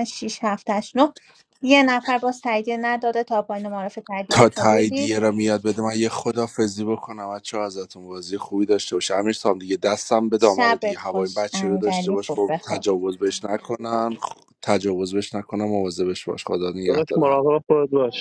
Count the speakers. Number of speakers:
3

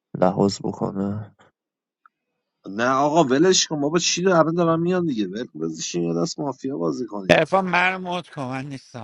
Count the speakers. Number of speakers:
3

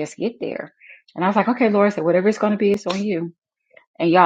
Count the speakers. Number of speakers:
1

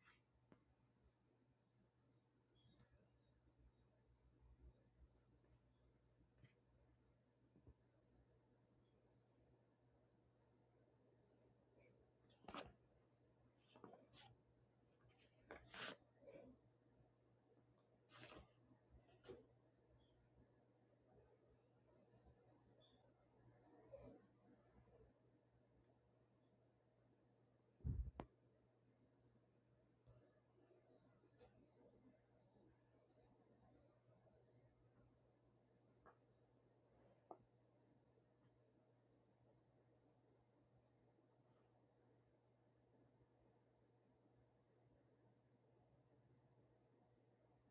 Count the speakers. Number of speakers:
0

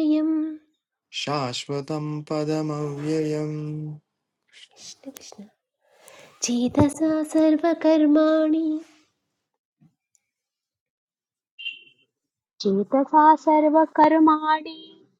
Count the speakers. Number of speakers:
3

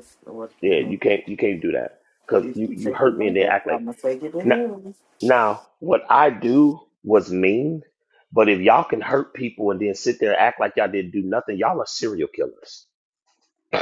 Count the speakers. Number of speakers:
2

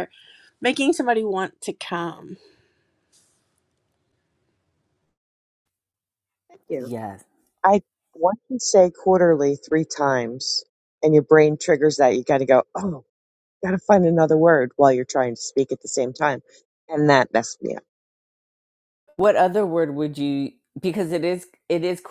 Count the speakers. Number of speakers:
3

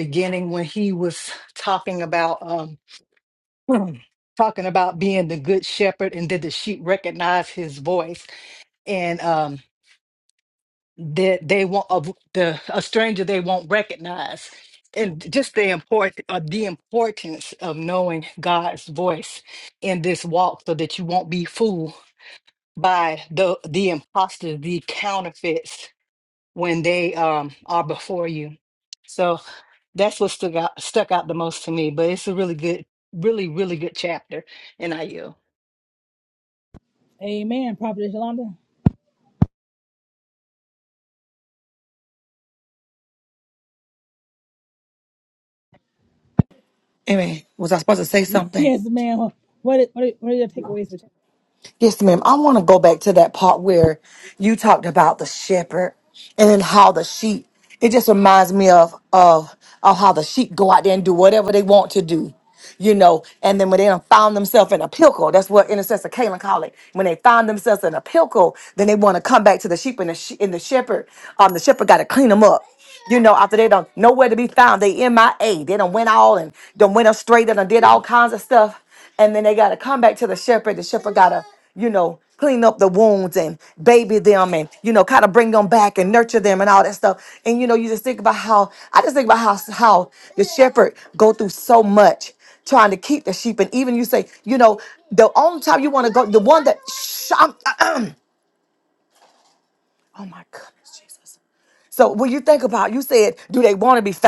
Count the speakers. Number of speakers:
3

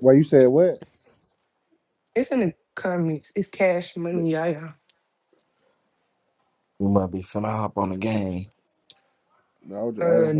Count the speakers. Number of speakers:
3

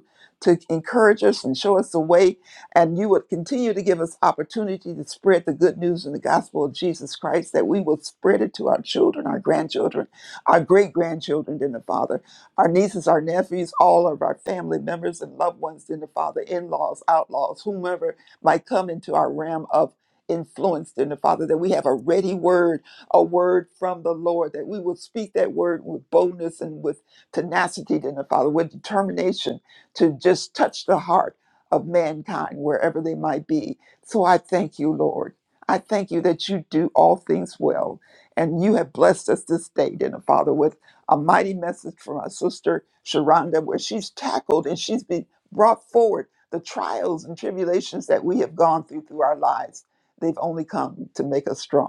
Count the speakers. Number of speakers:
1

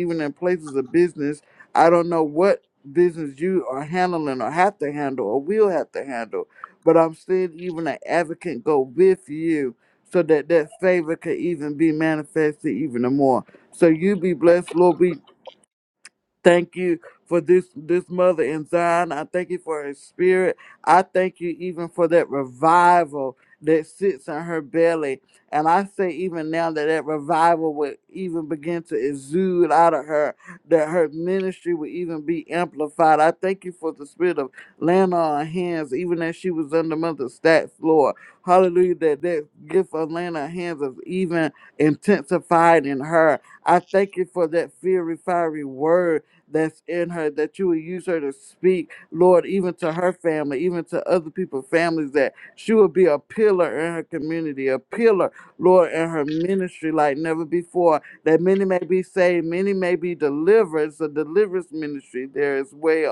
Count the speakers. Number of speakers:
1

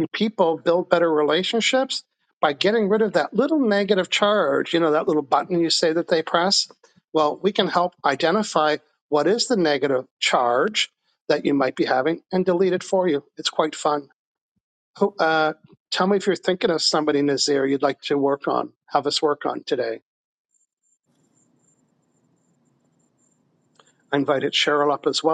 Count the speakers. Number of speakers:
1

